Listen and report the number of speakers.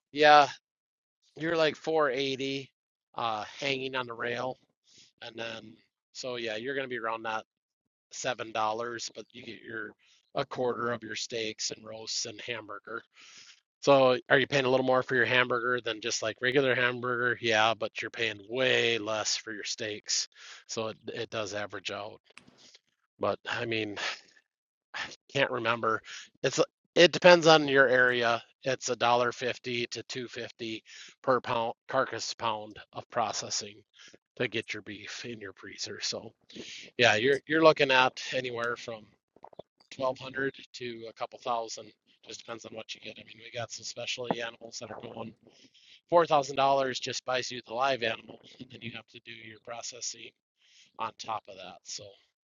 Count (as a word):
one